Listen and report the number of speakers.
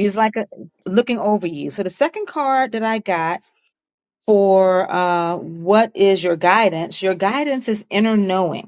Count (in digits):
1